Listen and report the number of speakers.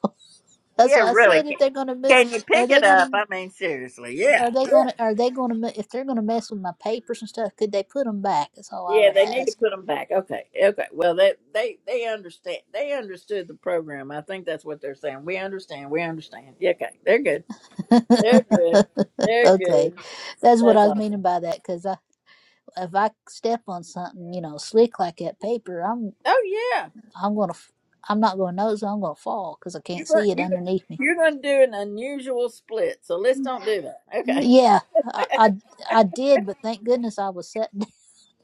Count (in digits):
2